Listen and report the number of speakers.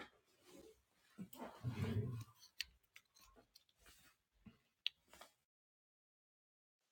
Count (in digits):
0